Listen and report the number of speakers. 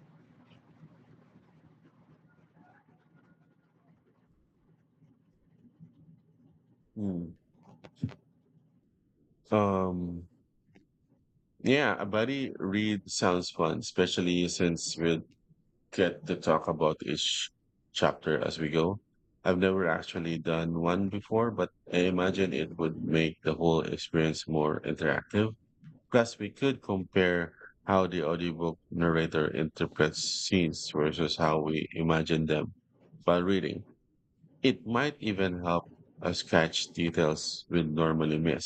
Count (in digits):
1